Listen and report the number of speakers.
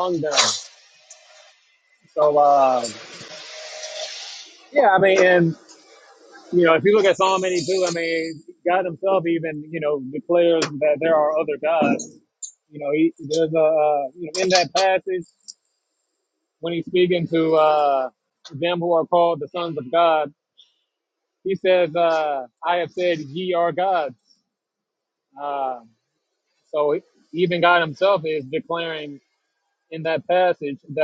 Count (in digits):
1